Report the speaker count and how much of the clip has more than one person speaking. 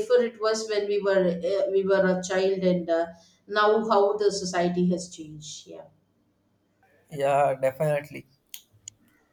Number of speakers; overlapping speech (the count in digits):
2, no overlap